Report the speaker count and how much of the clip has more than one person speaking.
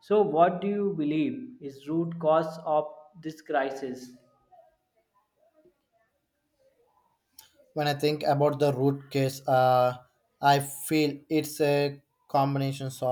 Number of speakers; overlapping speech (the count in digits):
2, no overlap